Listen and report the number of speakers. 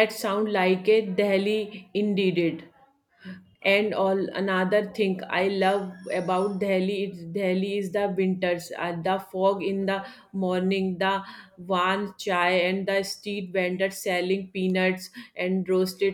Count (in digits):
1